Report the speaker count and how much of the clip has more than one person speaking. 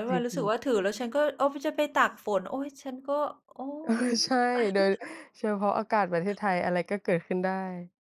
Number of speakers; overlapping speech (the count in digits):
2, about 7%